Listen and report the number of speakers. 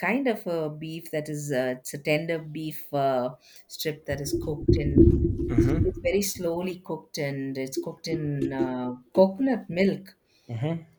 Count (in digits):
2